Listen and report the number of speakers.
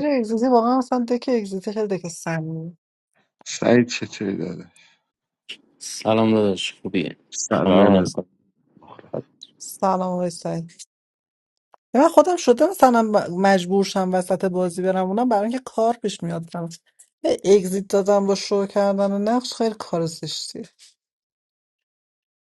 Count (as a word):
three